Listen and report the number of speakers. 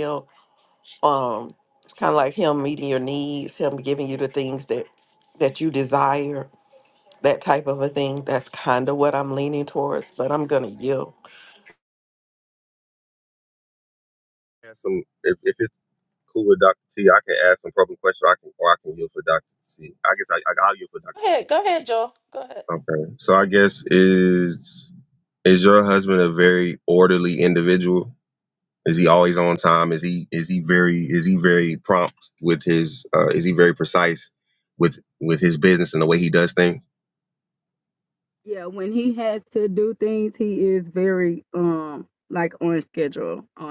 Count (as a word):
four